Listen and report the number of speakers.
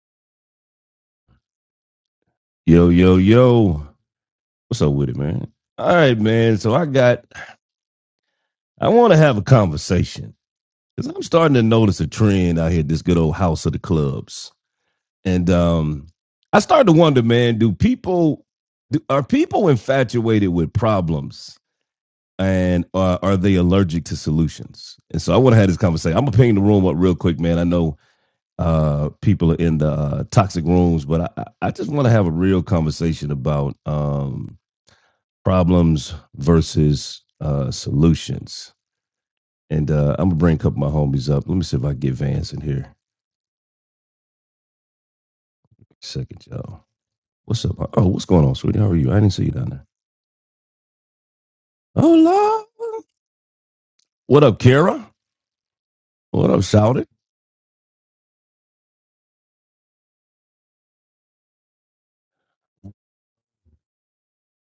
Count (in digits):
1